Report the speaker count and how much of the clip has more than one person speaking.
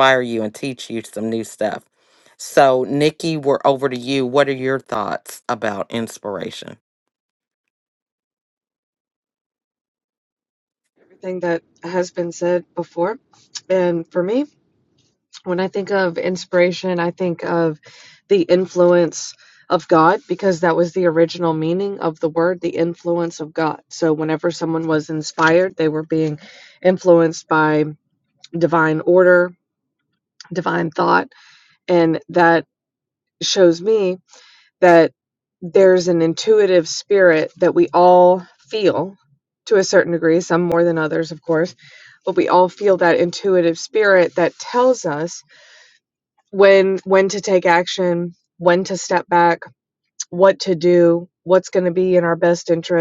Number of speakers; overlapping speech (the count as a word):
two, no overlap